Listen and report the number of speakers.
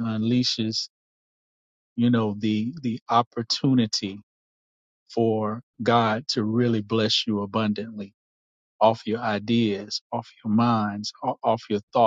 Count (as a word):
one